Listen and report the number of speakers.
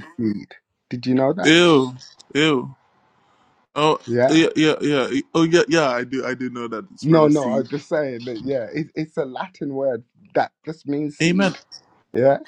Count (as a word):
two